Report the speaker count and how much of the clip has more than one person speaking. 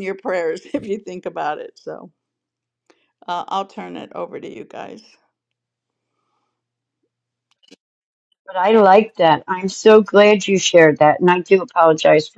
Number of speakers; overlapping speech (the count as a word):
two, no overlap